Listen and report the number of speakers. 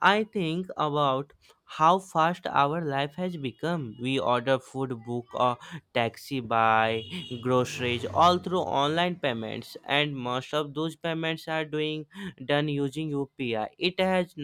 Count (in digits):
1